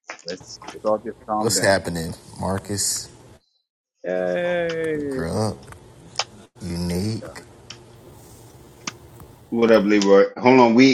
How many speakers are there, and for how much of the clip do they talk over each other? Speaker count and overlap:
3, about 8%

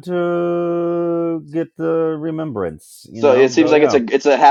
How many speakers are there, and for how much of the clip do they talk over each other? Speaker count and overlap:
2, about 17%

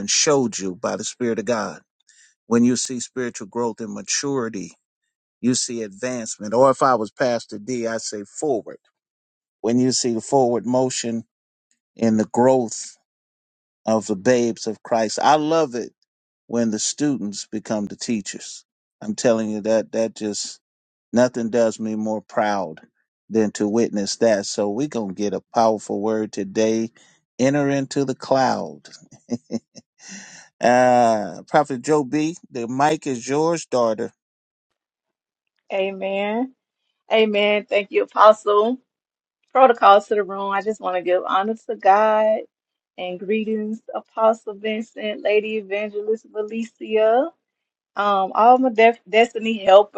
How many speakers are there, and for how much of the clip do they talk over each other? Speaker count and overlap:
2, no overlap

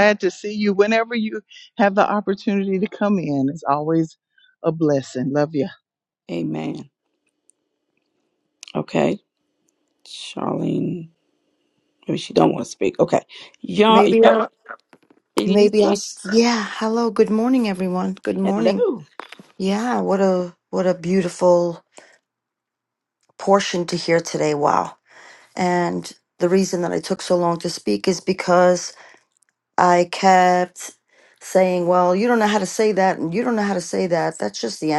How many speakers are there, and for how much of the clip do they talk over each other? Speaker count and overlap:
3, about 4%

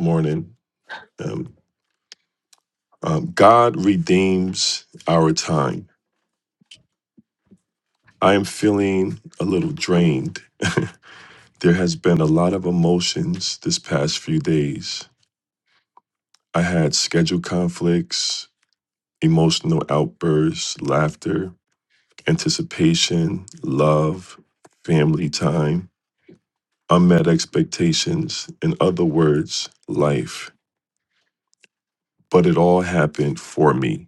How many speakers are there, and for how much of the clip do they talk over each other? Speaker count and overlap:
1, no overlap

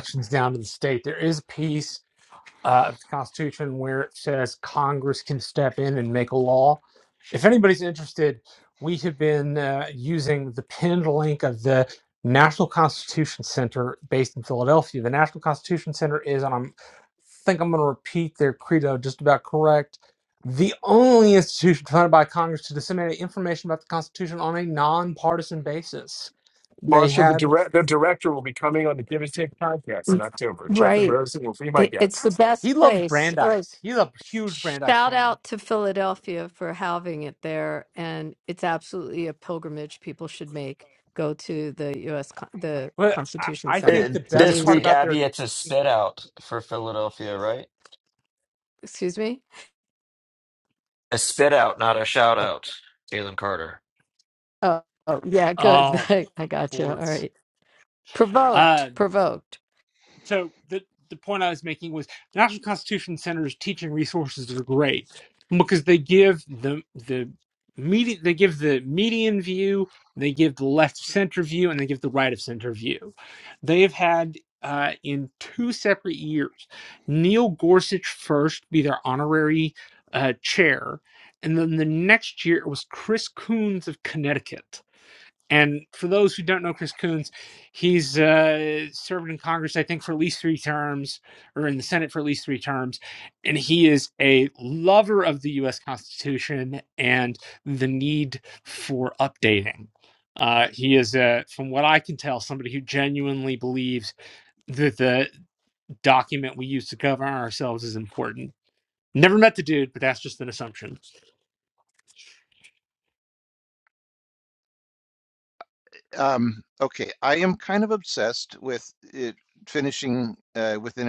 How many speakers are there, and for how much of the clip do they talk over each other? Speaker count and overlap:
5, about 5%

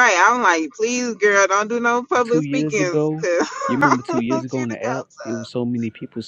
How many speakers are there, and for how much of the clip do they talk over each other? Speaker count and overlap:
2, about 43%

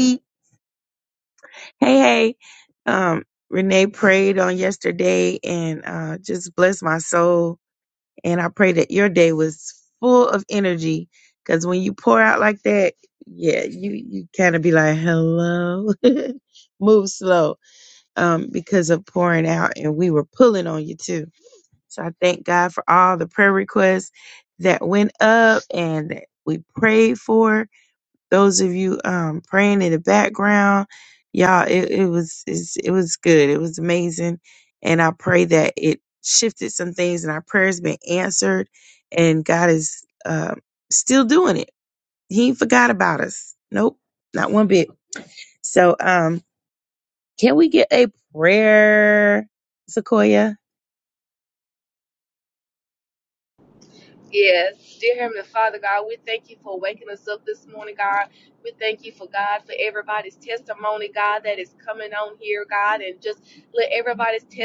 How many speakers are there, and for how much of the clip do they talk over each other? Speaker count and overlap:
2, no overlap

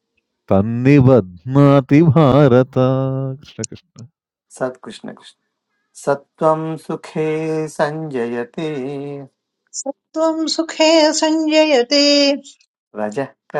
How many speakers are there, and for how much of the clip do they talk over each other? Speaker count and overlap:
3, no overlap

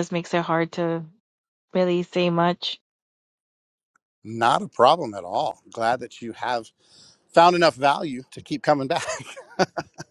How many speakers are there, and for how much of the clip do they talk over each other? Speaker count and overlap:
2, no overlap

